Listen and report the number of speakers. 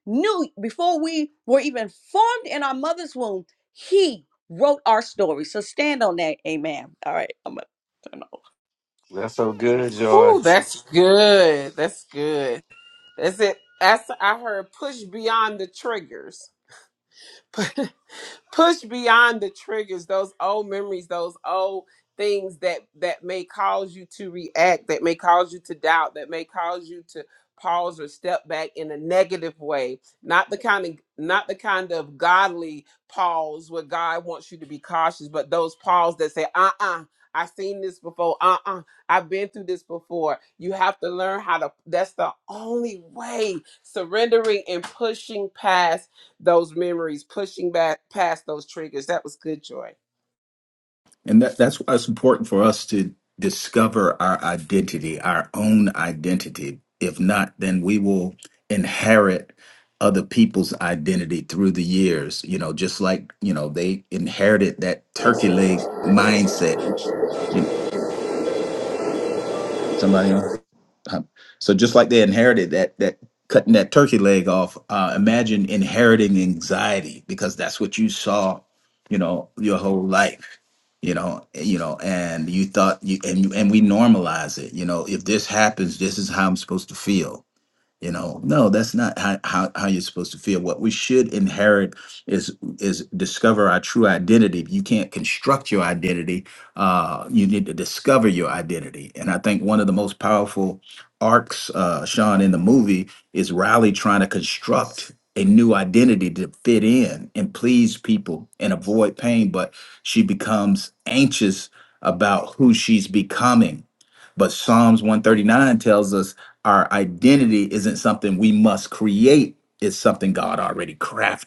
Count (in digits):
4